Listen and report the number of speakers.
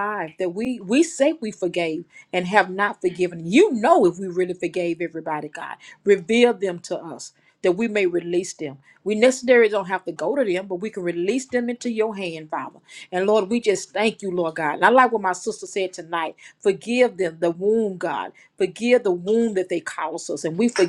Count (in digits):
1